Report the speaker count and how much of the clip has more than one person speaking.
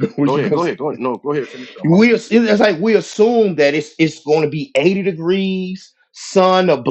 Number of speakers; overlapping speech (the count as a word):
two, about 11%